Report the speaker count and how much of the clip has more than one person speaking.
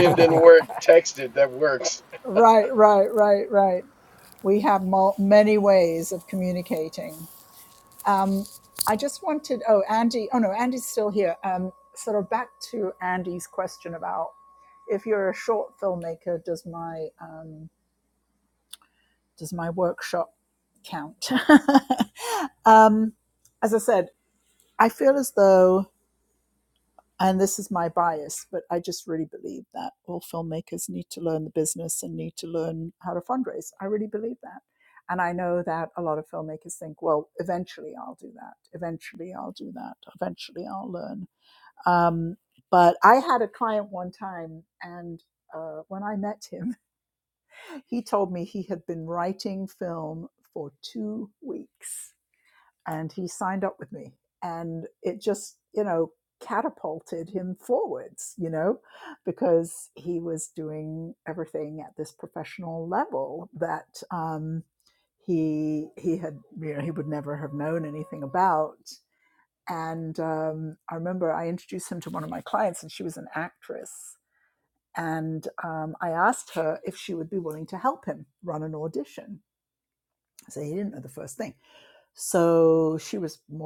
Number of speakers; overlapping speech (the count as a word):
two, under 1%